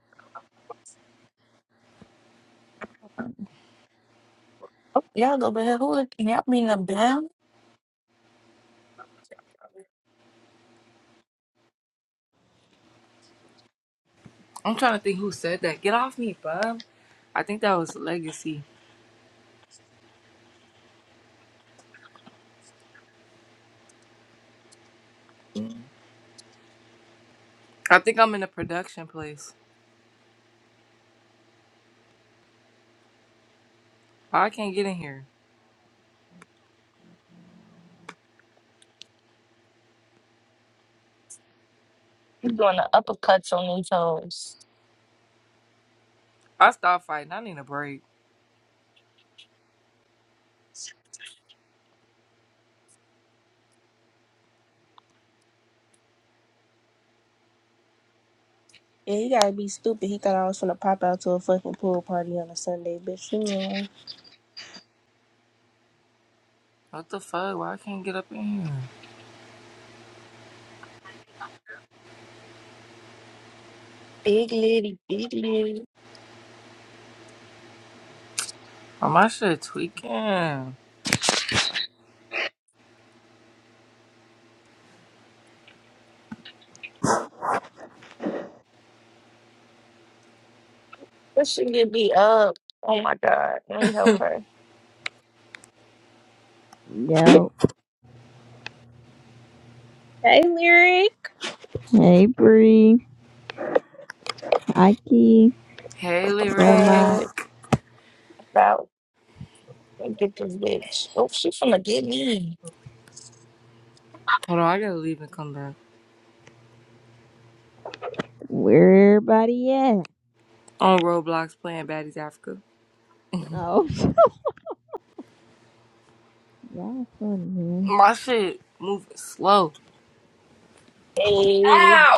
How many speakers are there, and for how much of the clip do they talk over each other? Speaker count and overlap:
4, about 1%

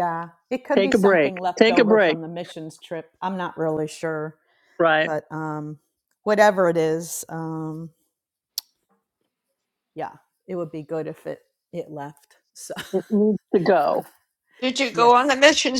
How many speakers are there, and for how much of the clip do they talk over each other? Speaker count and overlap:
3, about 10%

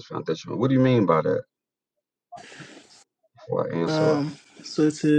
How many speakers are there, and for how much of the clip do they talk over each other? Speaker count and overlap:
2, about 6%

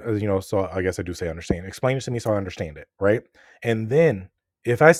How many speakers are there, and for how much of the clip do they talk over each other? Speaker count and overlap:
1, no overlap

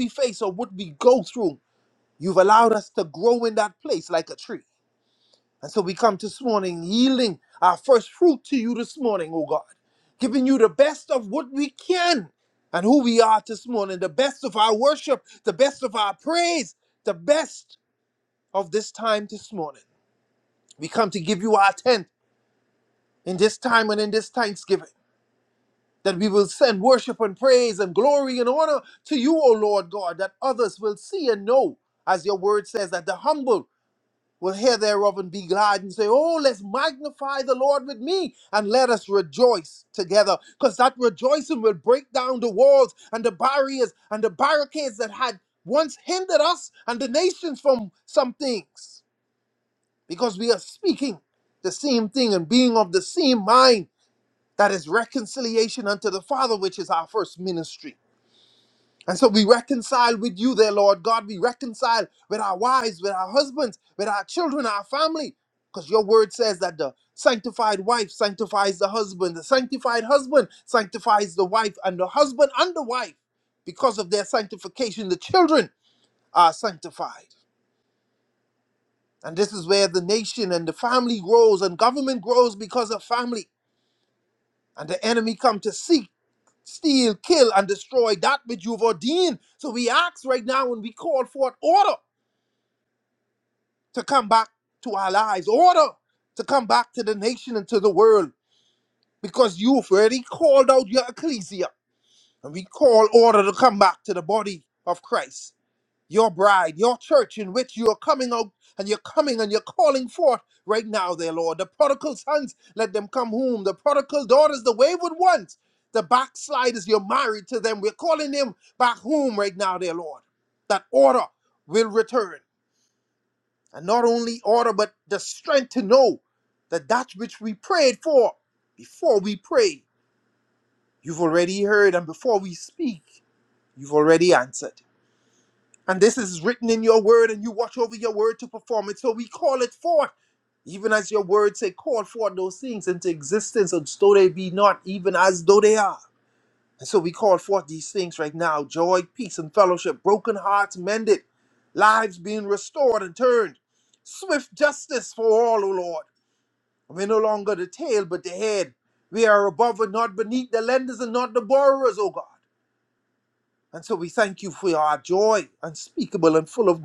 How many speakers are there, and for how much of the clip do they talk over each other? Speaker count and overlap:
1, no overlap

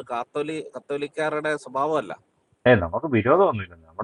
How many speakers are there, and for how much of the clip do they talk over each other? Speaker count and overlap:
2, no overlap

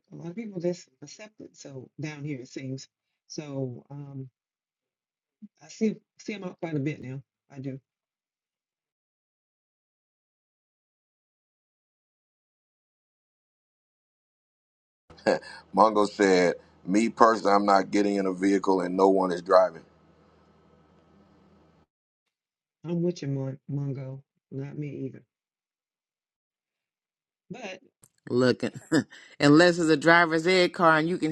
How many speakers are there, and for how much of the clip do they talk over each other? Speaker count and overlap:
3, no overlap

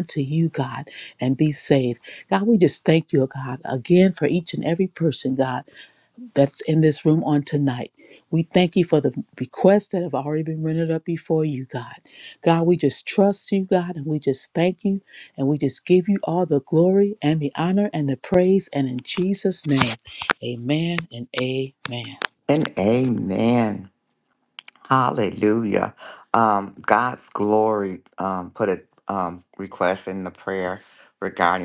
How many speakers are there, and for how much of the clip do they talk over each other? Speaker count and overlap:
2, no overlap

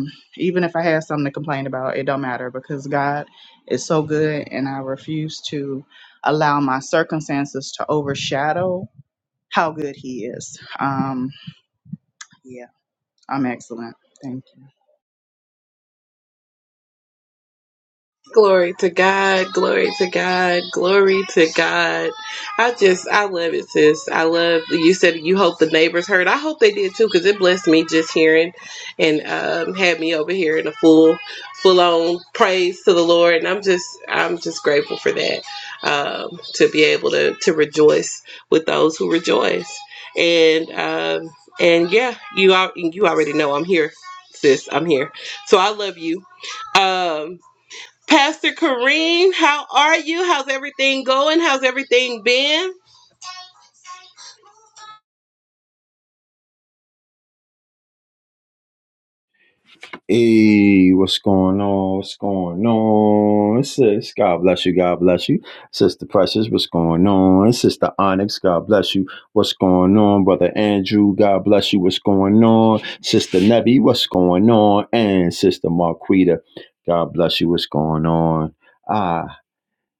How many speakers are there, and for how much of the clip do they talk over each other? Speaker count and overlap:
3, no overlap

